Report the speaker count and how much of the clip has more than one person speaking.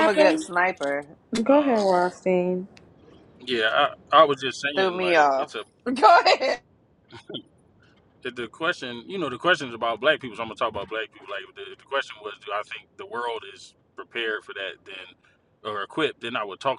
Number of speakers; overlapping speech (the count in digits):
3, about 9%